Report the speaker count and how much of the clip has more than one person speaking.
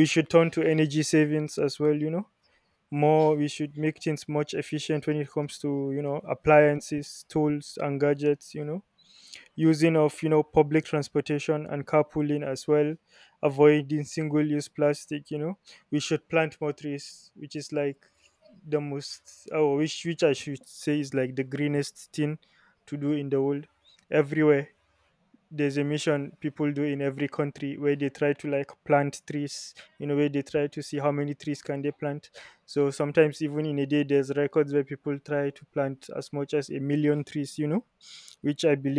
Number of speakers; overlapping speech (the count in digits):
1, no overlap